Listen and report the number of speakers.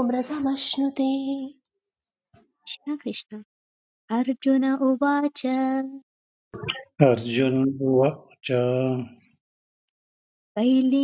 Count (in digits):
3